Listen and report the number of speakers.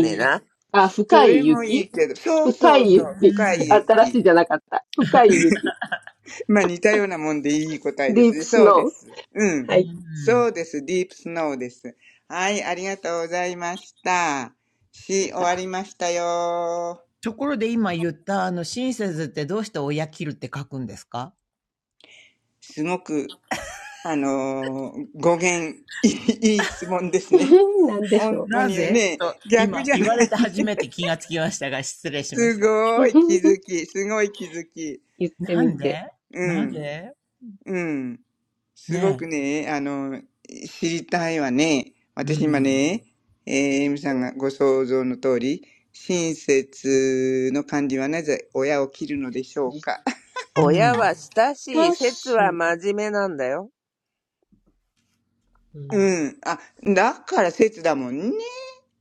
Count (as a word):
four